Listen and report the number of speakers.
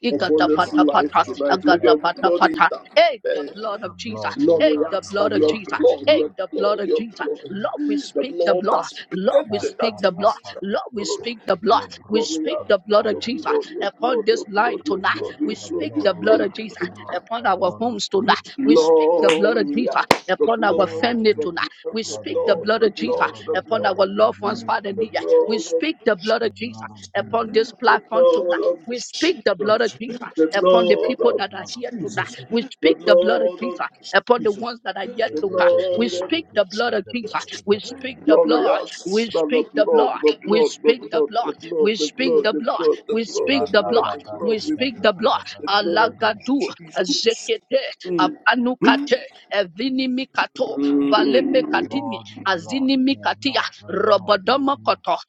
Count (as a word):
three